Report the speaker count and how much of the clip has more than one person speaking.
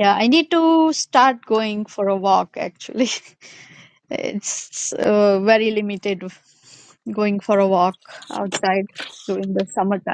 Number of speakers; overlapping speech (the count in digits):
1, no overlap